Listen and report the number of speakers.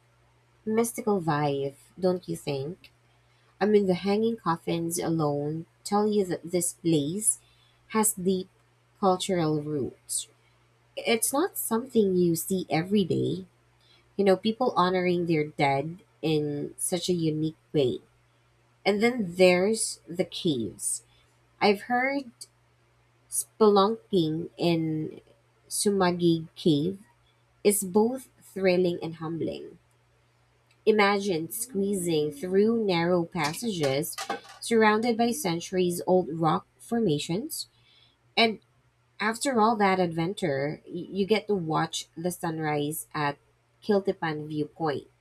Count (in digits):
1